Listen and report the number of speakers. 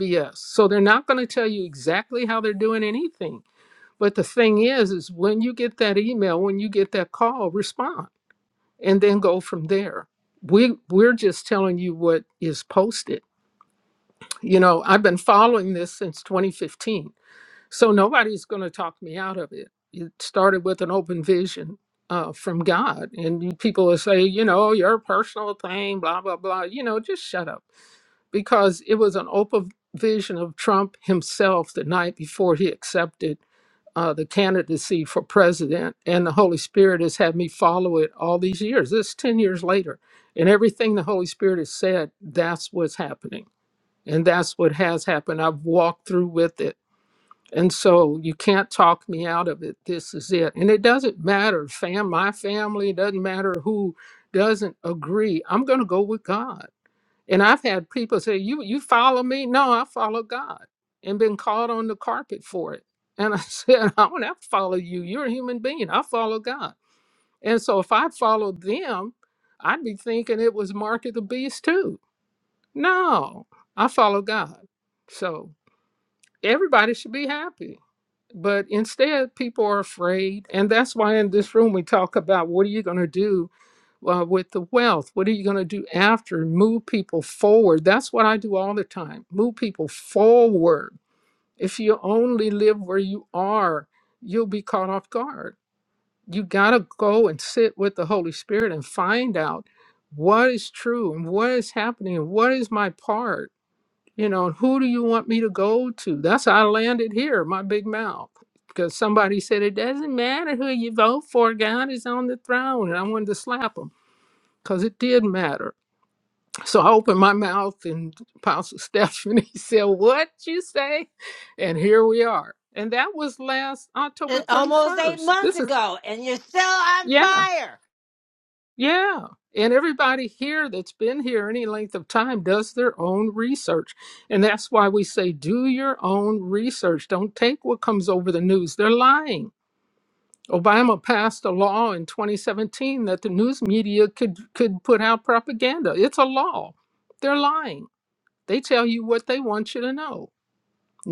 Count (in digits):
2